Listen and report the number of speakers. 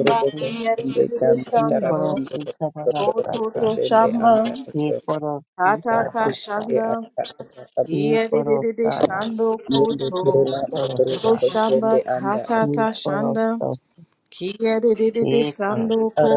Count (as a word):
three